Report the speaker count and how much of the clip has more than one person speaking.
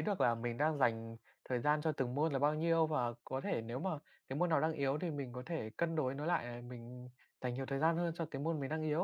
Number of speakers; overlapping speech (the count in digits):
1, no overlap